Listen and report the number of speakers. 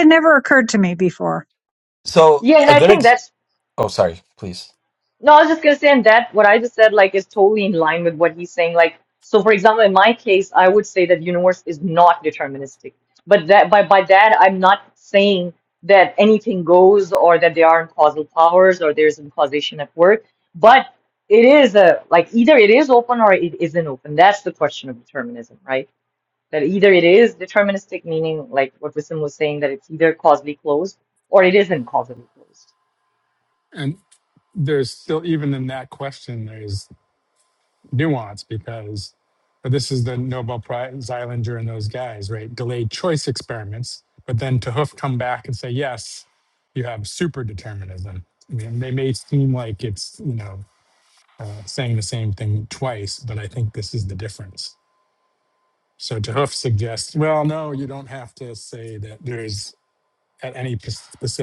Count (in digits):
4